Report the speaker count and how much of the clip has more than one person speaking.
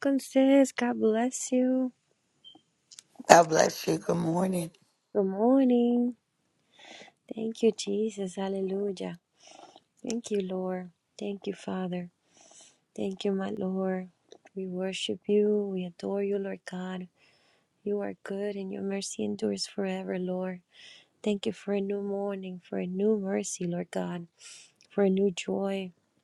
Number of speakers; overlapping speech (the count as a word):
two, no overlap